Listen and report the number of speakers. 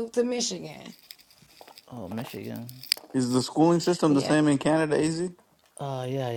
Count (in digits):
3